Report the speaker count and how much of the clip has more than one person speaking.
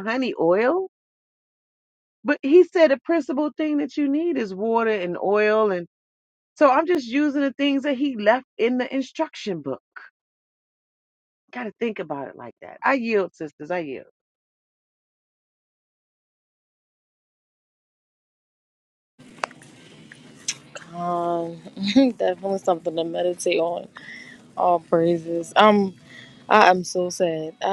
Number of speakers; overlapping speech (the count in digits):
2, no overlap